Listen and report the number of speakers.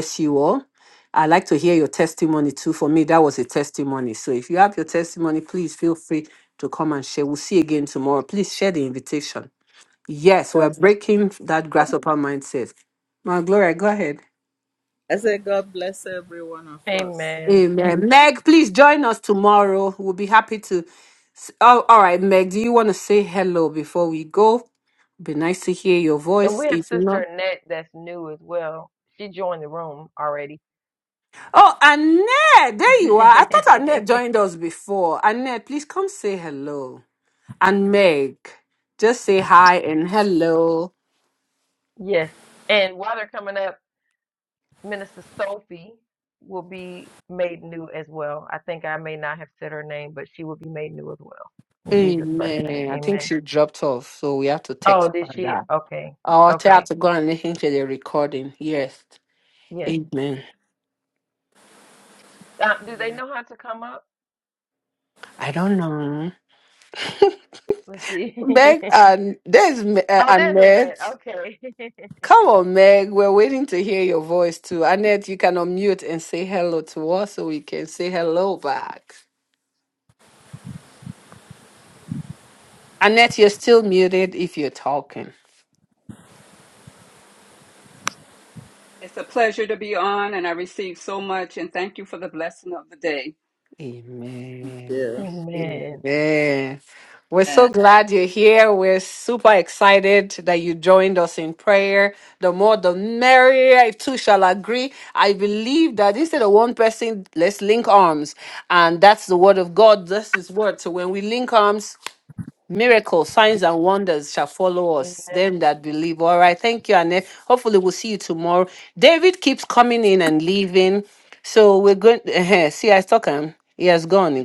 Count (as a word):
four